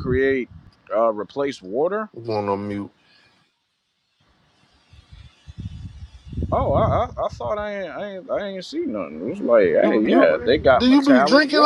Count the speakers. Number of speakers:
2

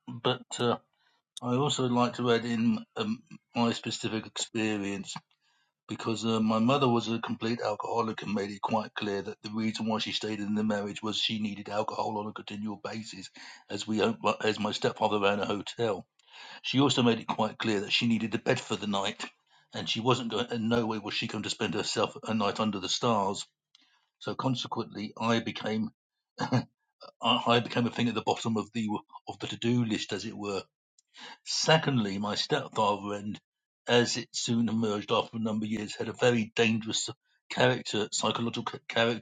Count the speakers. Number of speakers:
1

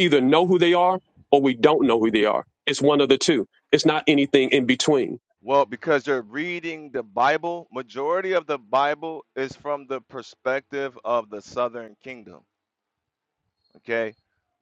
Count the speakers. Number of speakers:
2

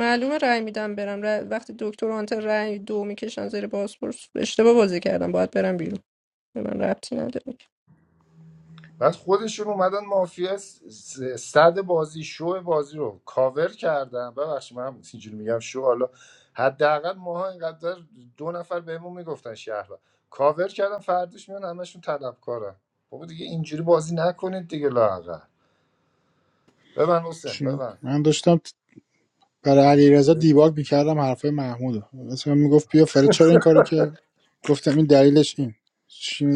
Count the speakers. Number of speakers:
3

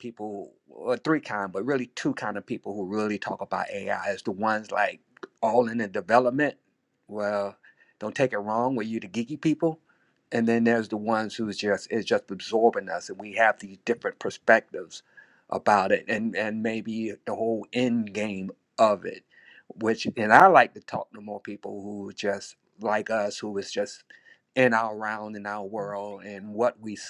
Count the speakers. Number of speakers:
1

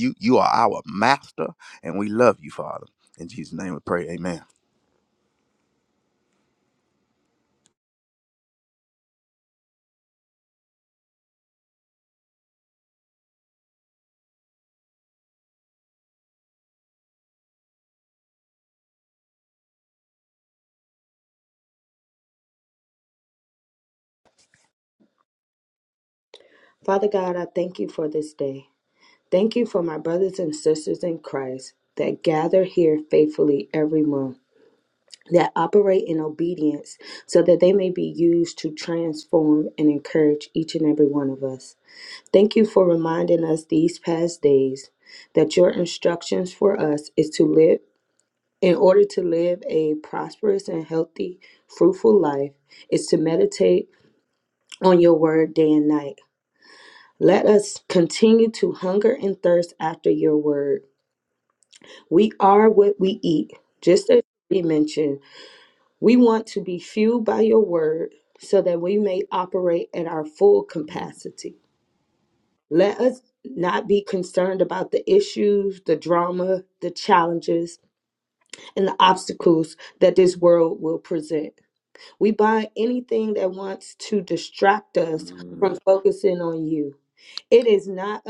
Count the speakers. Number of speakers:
2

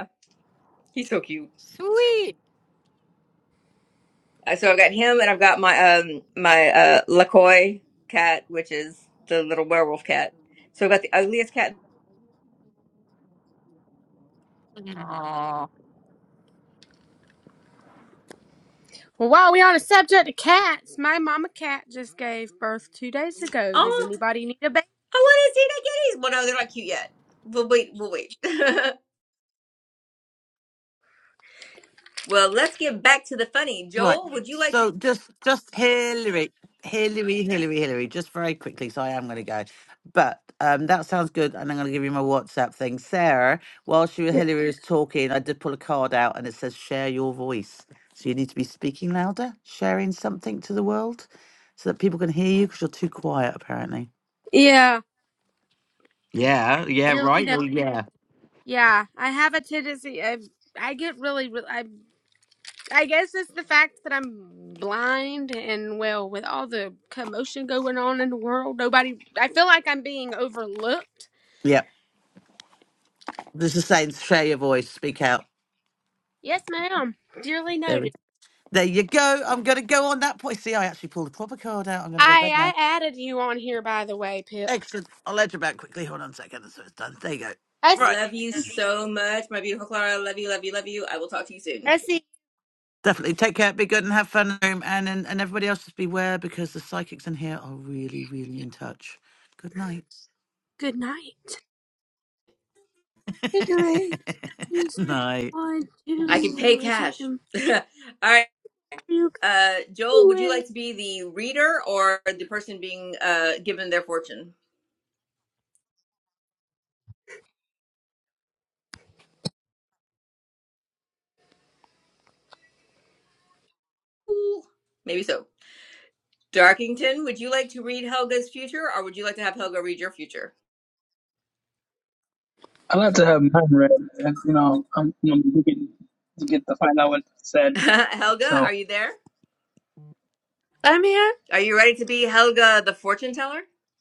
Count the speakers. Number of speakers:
6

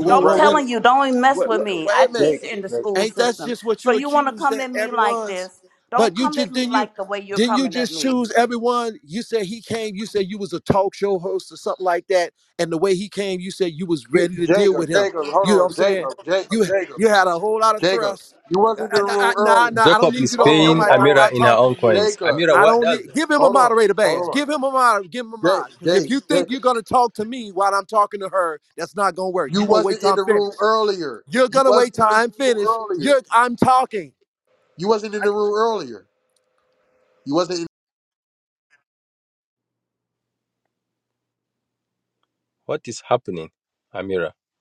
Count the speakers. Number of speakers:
4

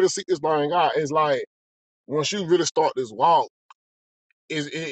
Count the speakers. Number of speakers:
1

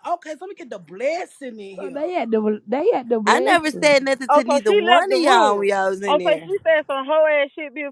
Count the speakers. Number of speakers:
4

